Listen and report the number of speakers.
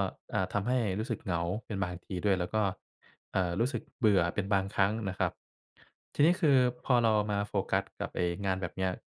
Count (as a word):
one